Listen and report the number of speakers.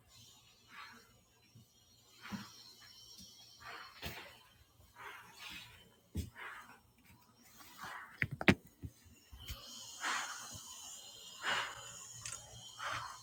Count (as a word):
zero